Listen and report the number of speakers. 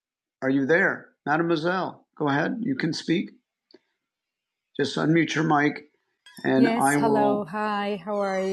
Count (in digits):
2